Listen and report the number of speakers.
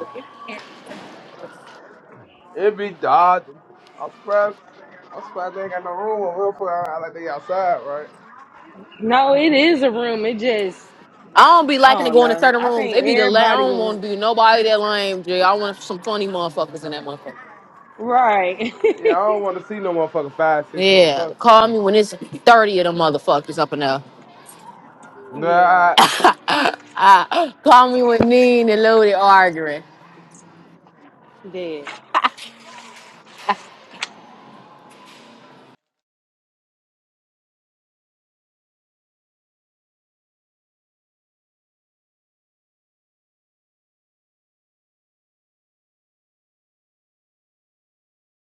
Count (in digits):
3